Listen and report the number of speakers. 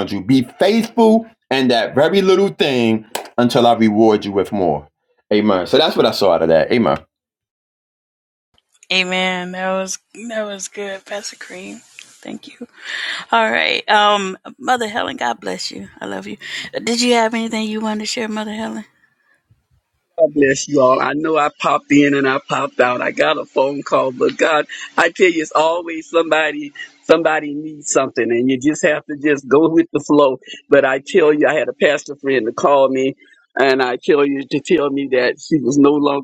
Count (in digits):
3